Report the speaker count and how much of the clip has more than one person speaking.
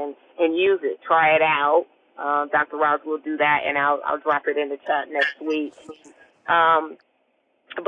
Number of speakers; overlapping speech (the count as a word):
one, no overlap